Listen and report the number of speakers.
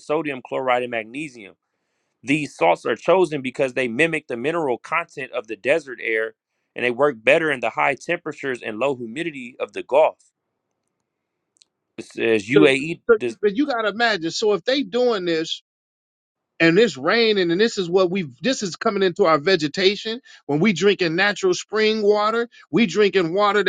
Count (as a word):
two